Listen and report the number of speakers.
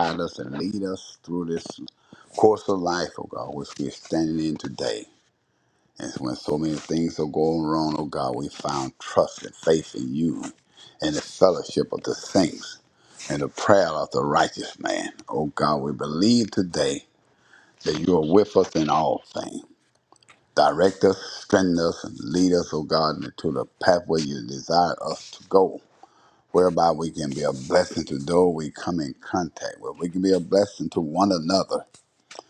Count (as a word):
one